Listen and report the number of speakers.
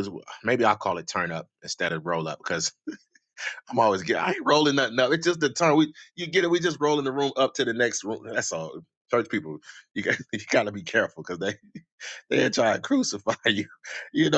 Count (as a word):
one